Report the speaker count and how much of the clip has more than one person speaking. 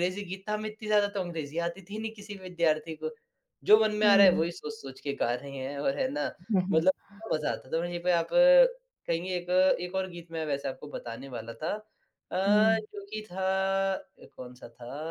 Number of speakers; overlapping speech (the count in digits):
2, about 3%